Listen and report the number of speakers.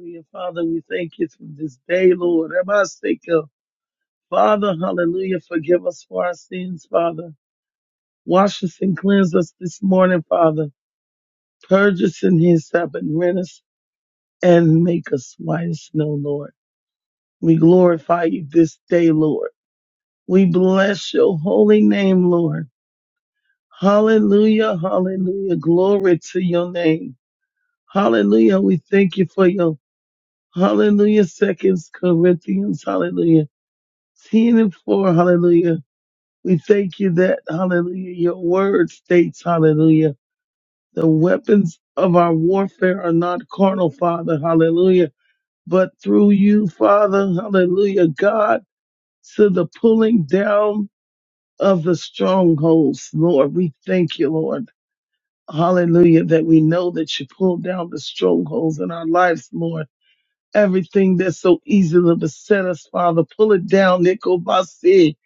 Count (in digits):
1